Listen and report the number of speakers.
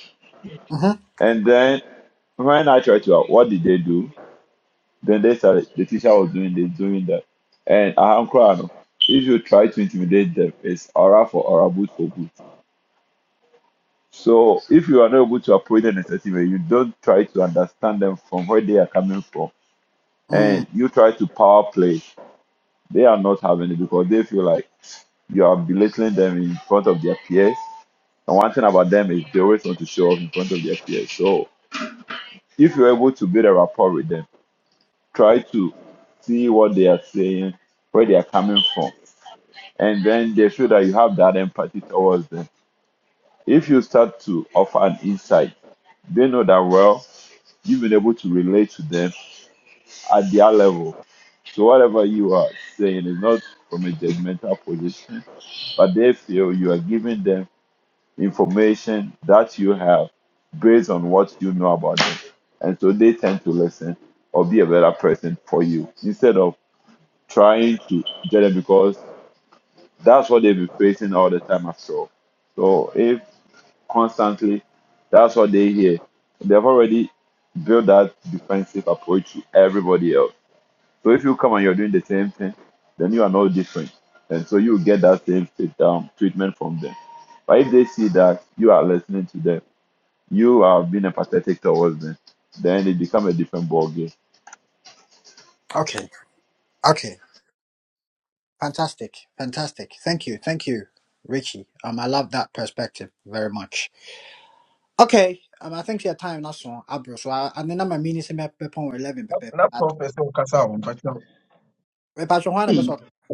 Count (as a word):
three